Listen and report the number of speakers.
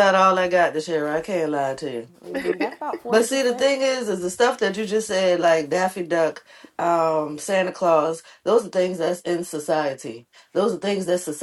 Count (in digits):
2